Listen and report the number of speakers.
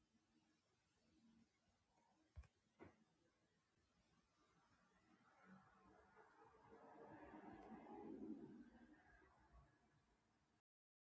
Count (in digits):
0